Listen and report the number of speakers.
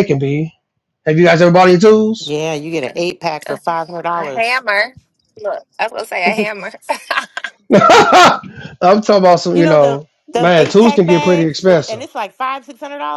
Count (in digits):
3